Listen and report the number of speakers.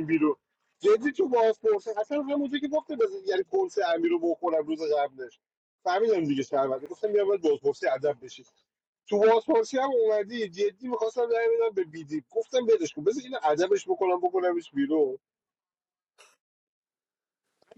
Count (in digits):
1